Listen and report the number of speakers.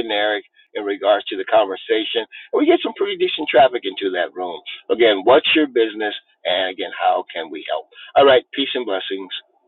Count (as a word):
one